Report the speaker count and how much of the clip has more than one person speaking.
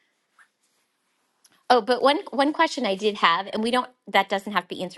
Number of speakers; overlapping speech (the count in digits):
1, no overlap